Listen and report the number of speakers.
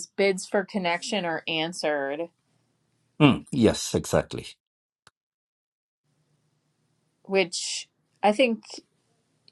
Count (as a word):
two